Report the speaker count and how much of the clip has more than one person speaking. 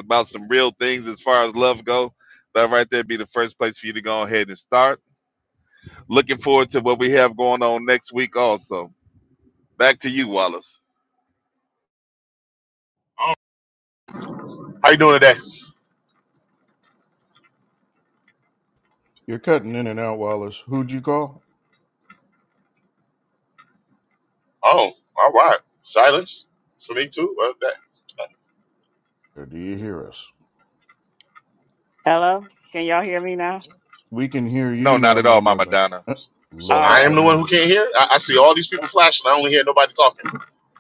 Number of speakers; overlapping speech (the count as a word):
four, about 4%